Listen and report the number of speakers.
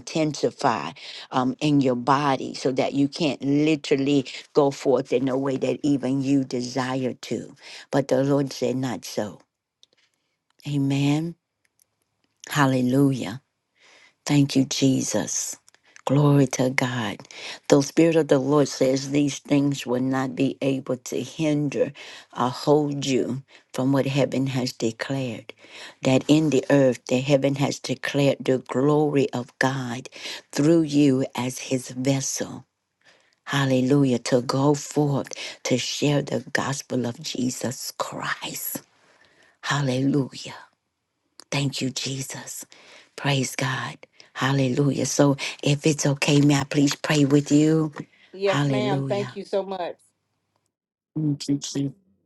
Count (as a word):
two